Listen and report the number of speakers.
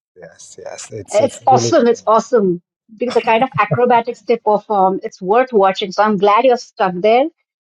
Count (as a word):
two